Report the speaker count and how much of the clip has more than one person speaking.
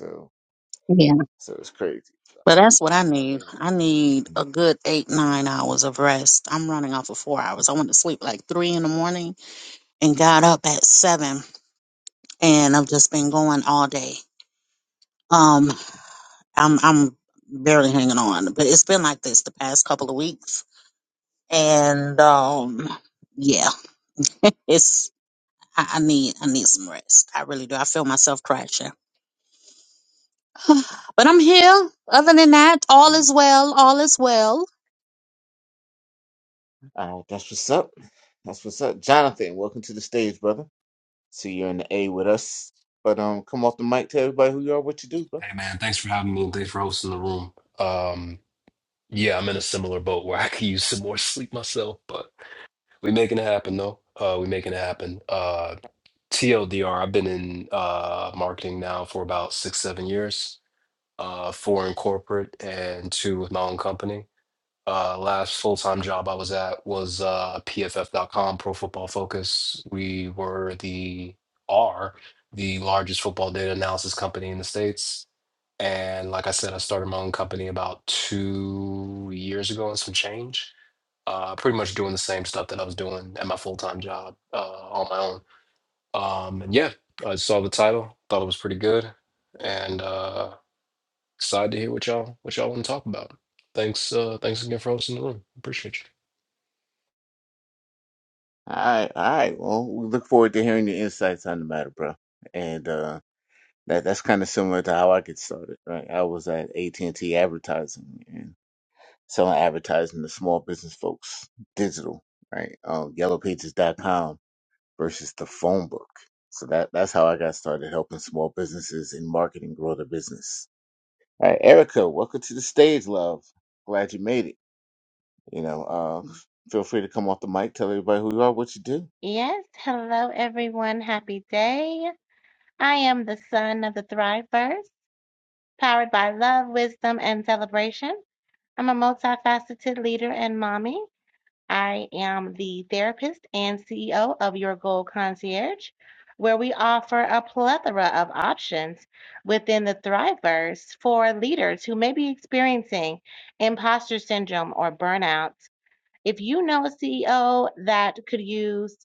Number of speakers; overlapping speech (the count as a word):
four, under 1%